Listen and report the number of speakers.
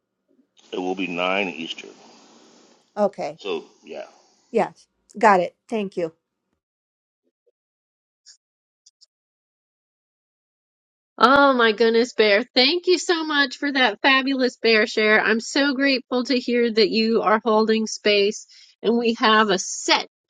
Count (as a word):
three